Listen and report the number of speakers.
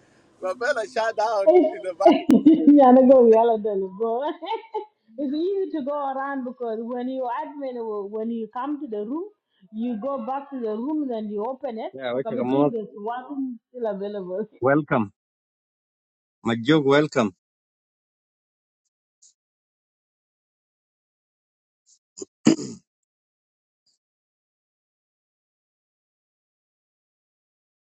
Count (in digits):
3